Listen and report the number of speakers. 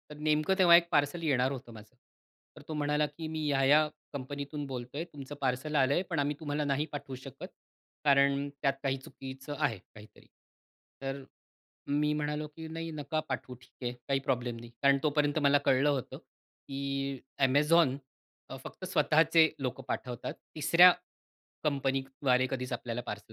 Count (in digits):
1